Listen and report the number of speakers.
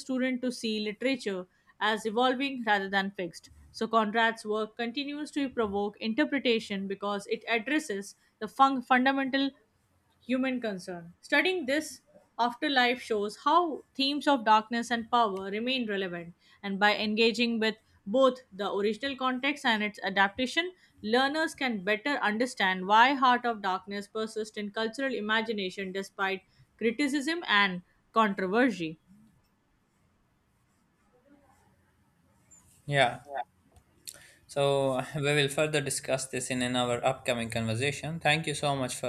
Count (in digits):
2